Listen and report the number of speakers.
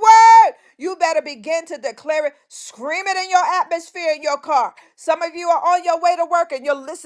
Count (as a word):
one